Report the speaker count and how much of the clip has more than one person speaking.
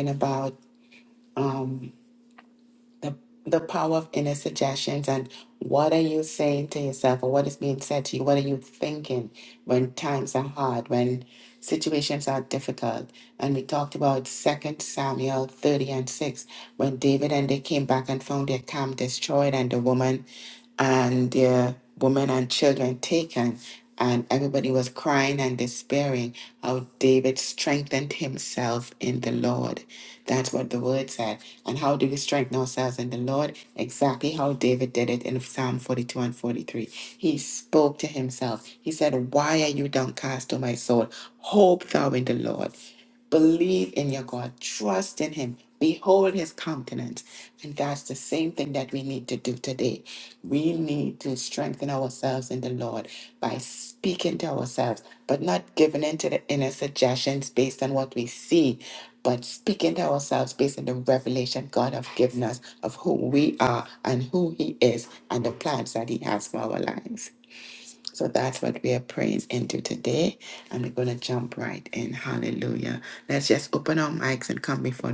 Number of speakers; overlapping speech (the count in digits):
1, no overlap